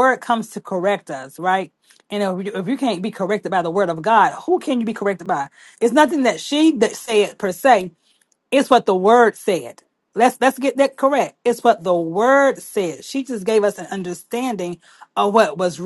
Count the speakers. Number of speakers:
1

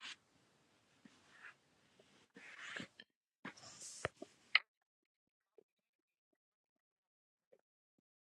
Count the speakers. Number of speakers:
0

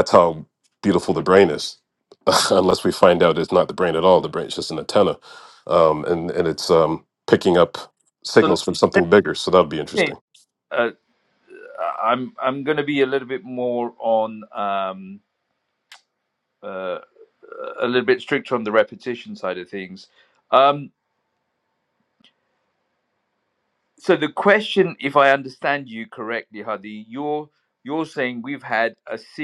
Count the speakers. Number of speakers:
2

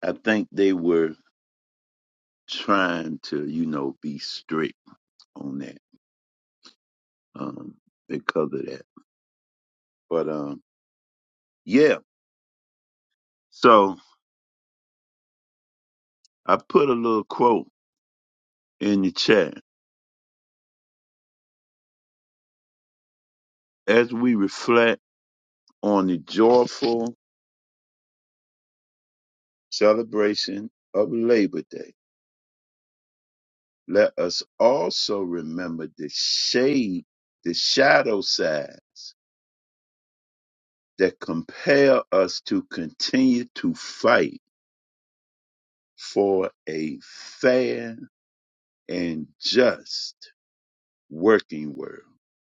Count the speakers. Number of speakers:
1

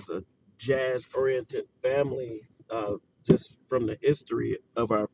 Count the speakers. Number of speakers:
1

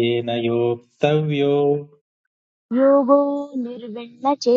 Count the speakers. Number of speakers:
2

